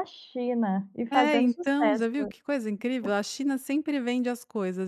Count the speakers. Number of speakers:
2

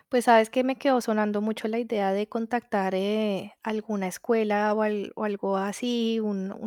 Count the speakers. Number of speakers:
1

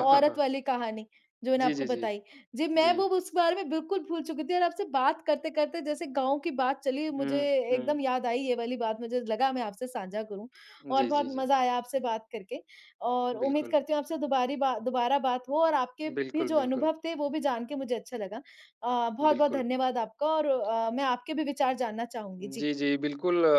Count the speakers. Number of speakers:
2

